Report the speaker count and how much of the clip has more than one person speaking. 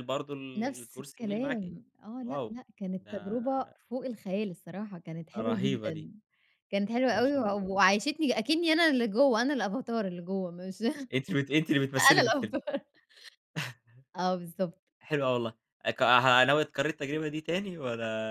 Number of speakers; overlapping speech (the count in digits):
2, about 19%